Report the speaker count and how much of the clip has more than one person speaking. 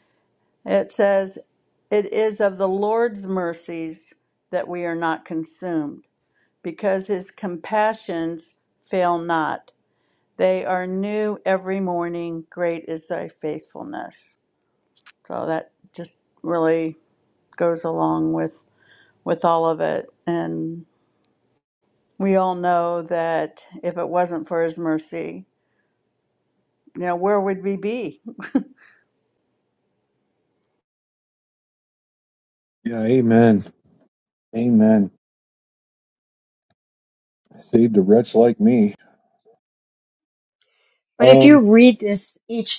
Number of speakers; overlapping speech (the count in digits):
3, about 1%